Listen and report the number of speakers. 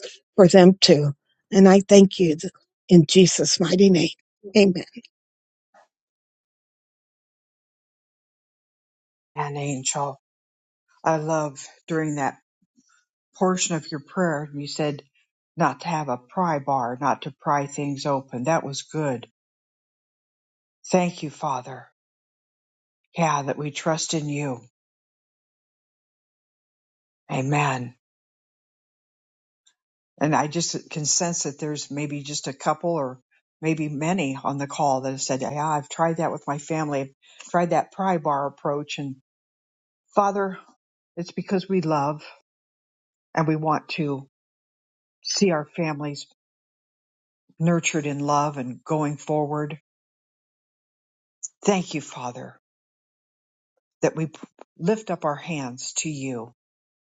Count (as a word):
two